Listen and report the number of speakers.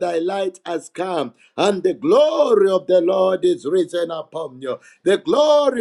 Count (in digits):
1